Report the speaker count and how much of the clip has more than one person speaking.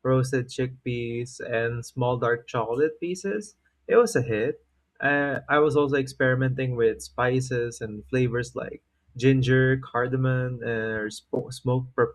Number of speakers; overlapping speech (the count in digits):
1, no overlap